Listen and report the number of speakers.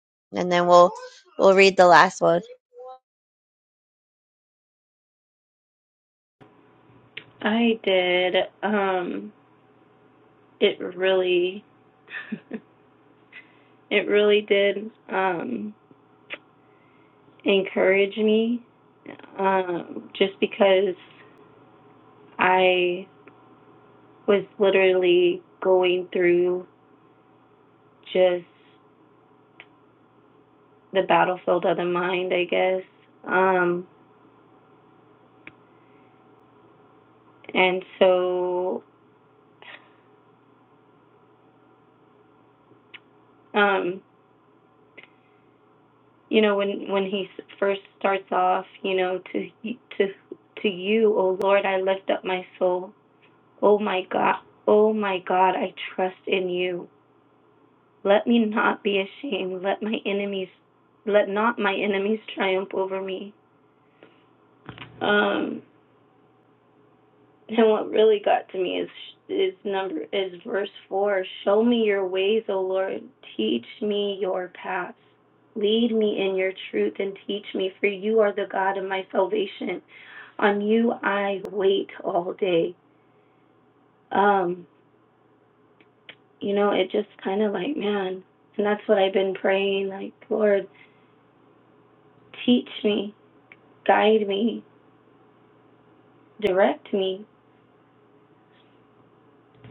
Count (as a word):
two